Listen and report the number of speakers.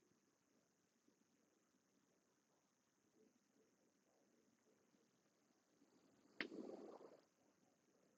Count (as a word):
zero